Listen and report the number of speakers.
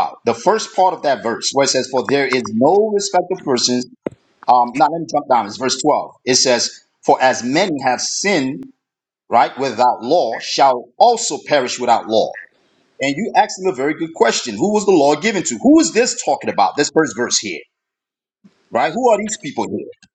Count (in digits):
1